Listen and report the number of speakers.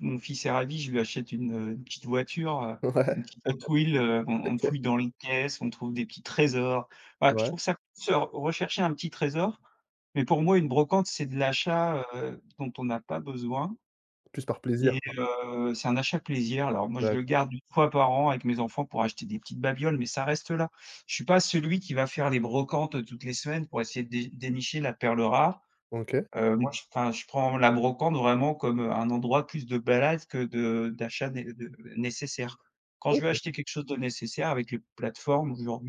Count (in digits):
2